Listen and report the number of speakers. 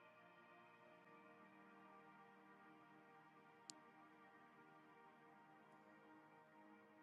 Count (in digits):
0